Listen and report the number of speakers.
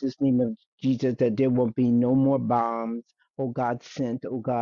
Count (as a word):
one